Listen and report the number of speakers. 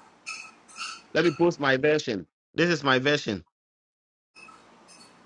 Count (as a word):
one